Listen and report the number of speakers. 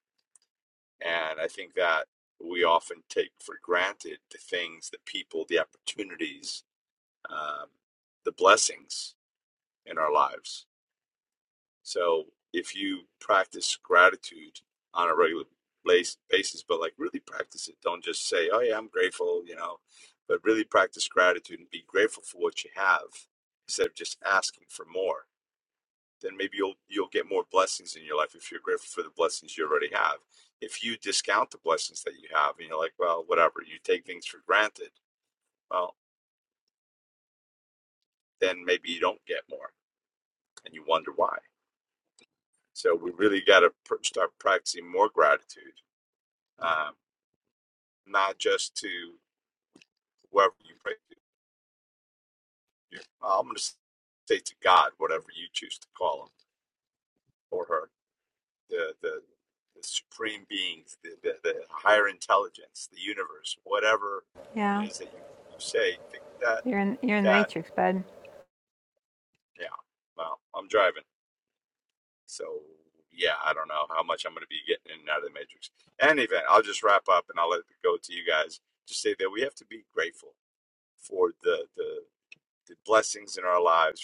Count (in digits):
2